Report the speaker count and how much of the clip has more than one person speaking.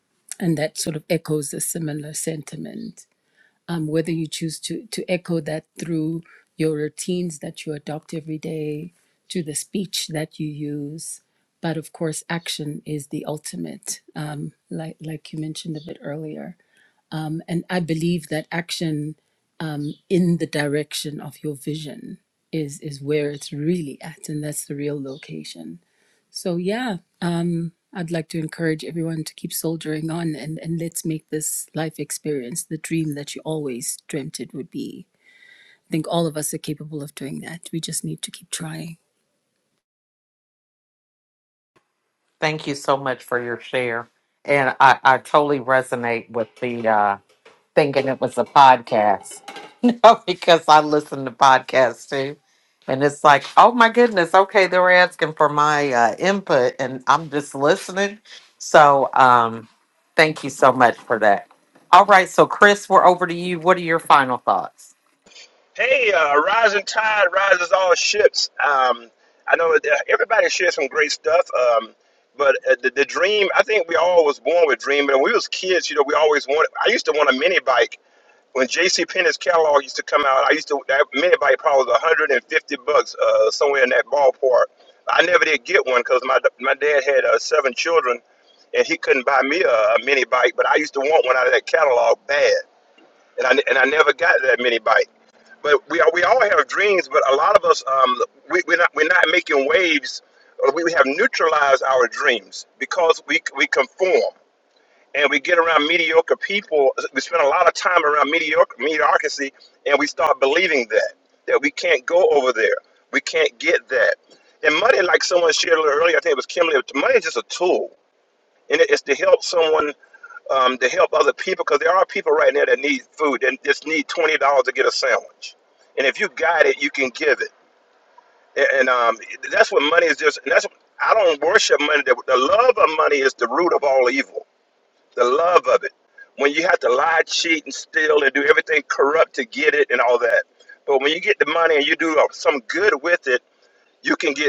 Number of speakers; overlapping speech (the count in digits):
3, no overlap